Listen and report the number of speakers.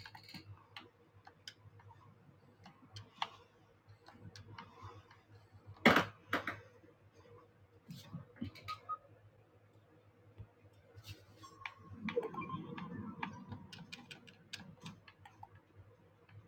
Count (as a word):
zero